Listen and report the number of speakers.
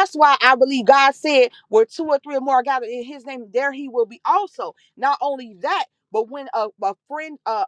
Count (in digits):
1